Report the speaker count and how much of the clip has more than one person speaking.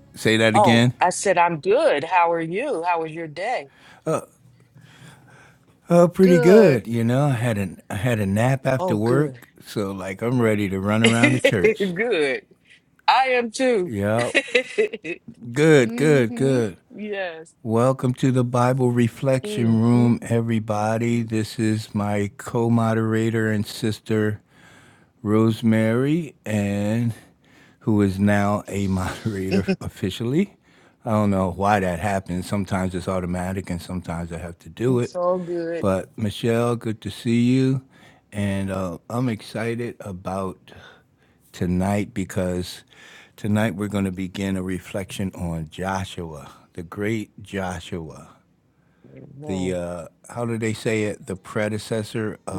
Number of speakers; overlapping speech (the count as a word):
two, about 6%